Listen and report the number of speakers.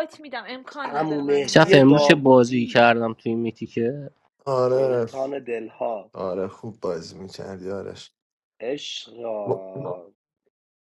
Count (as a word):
four